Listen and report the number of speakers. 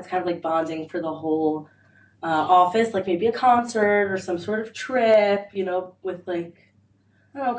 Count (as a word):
one